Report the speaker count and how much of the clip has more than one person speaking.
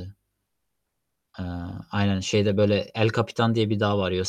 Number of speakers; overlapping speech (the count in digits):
1, no overlap